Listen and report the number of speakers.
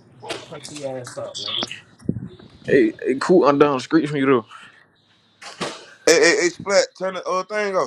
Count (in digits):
3